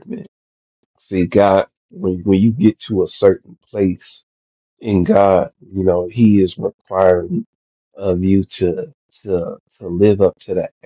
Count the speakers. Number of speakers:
one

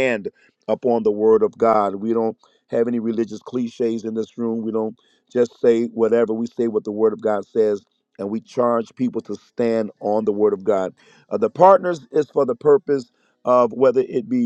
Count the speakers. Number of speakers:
one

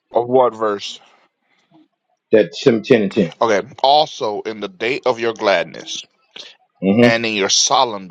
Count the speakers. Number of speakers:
two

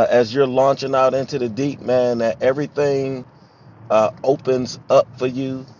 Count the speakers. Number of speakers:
one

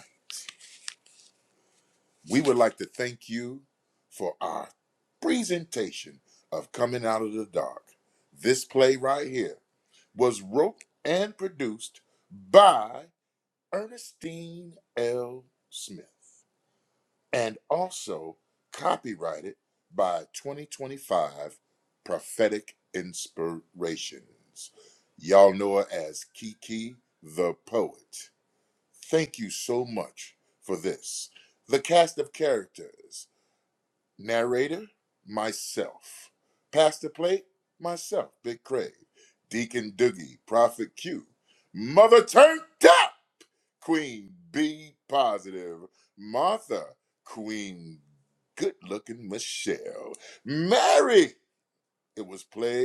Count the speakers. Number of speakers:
one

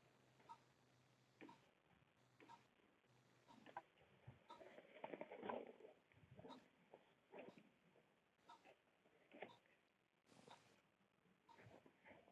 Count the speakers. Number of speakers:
zero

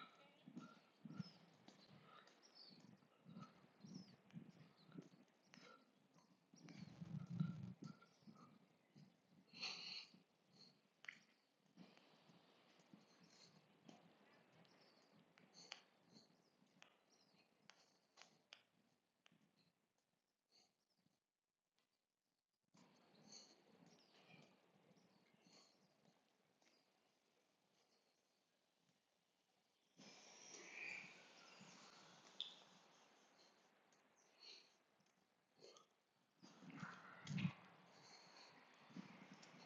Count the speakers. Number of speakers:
zero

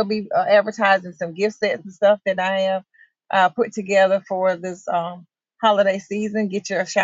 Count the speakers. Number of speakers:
one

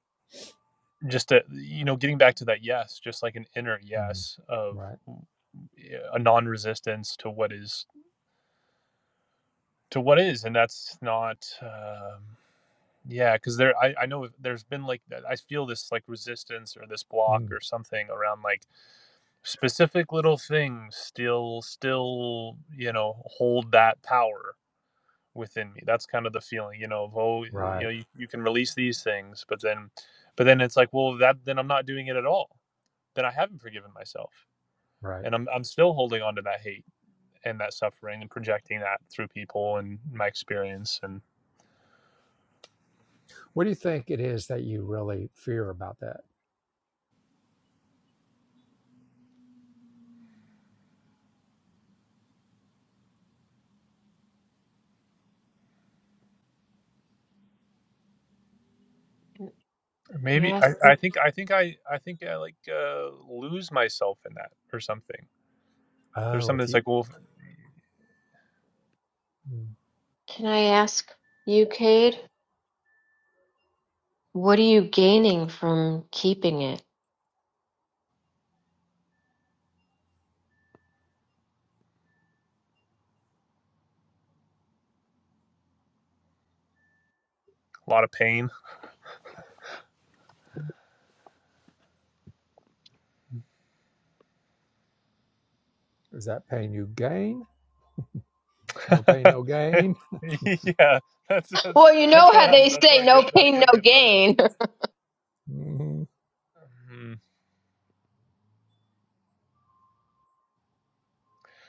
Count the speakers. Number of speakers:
three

